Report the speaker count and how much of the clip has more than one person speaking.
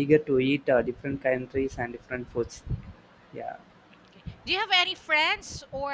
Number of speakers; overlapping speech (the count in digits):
2, no overlap